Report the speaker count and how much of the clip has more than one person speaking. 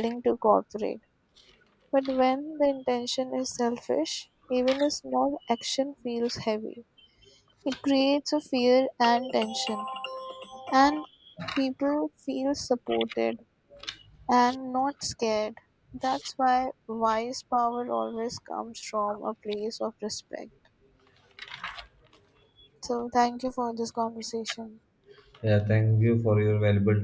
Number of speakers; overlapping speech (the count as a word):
two, no overlap